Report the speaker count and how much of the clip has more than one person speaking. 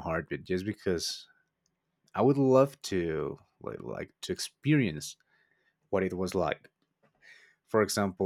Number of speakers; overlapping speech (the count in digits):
1, no overlap